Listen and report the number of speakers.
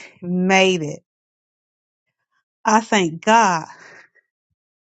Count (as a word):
one